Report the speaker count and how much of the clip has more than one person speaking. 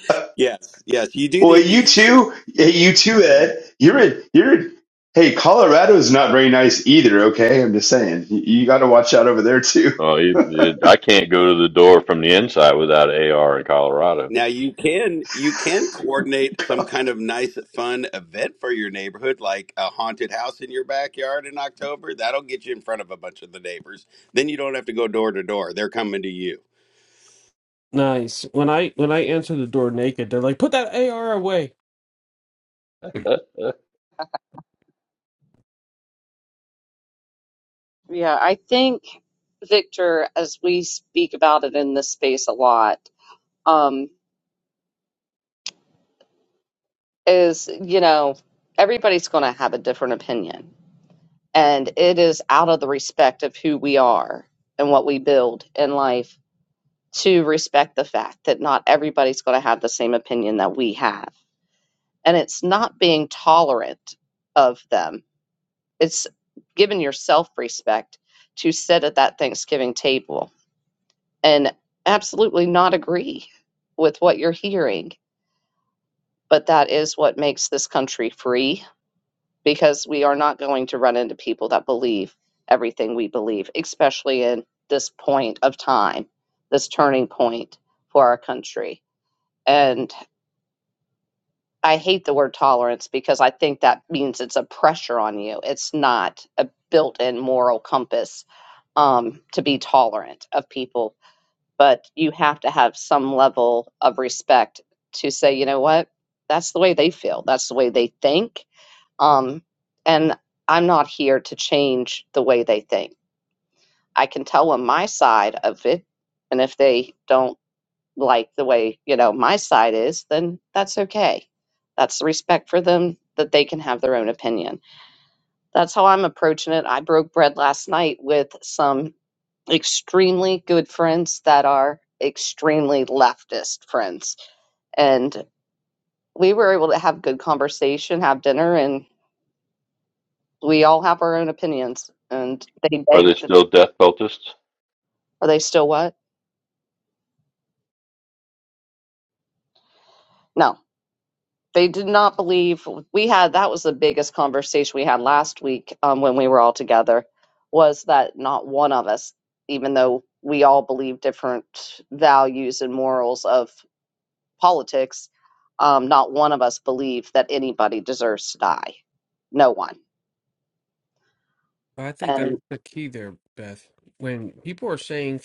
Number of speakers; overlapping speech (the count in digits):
5, about 1%